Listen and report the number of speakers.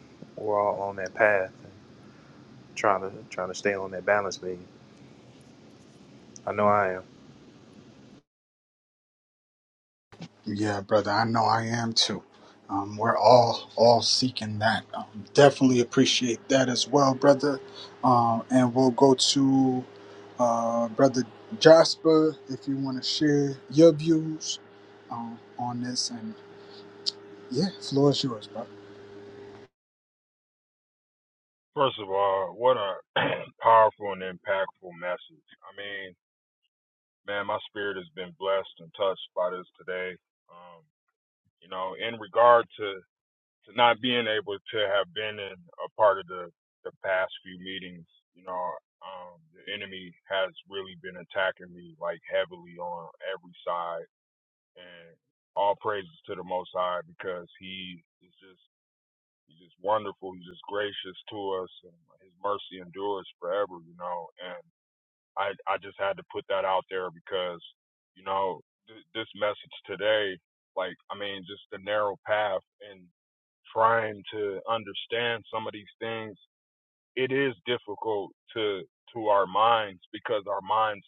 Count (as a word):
three